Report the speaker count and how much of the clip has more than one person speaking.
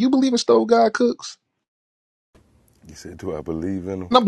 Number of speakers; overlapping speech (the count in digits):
2, no overlap